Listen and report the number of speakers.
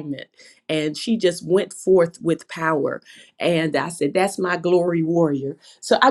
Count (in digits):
1